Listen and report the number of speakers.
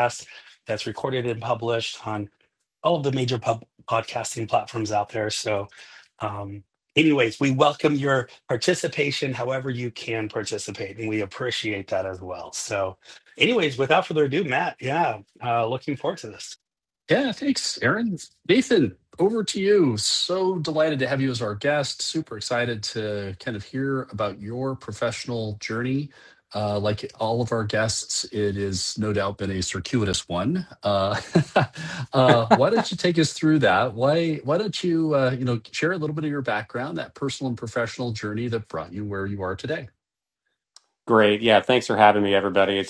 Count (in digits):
3